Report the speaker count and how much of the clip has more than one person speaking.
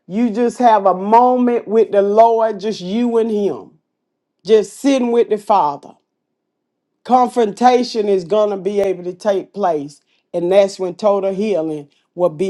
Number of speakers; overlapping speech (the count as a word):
one, no overlap